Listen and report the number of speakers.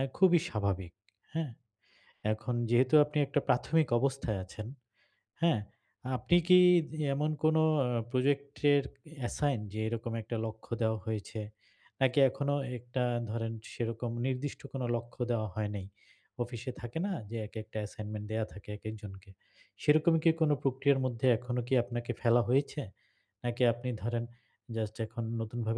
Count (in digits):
1